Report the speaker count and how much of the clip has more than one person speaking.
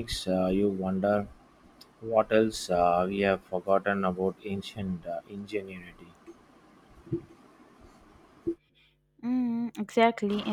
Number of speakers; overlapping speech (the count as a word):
two, no overlap